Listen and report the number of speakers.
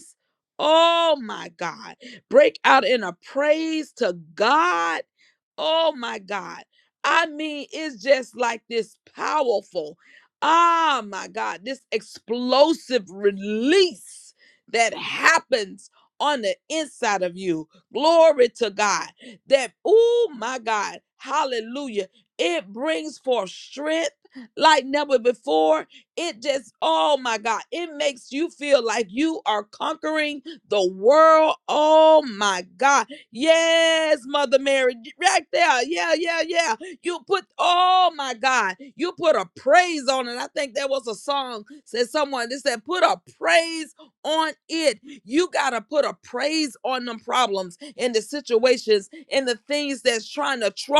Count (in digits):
1